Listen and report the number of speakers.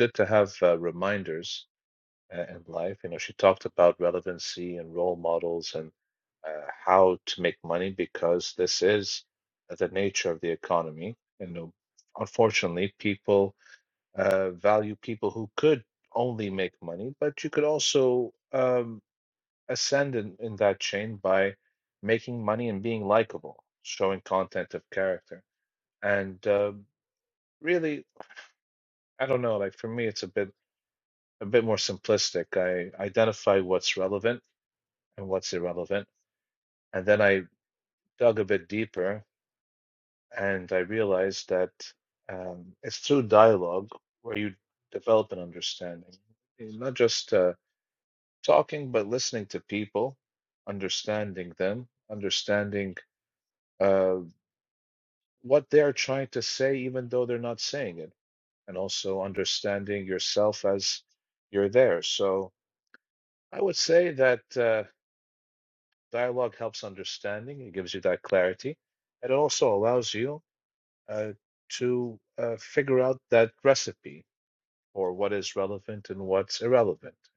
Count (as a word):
one